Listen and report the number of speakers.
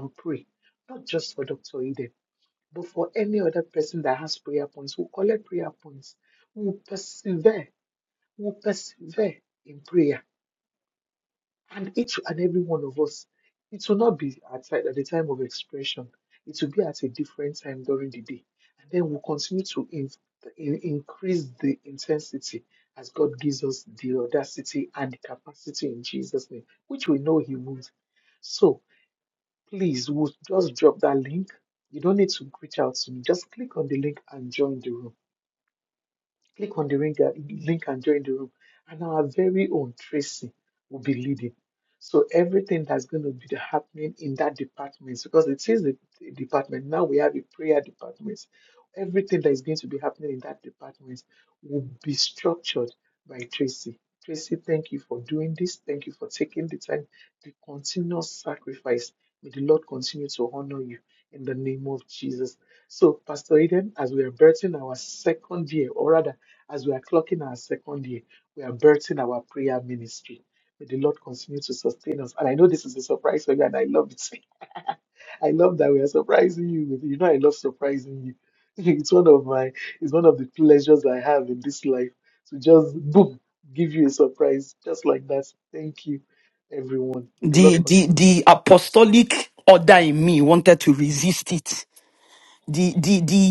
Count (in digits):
2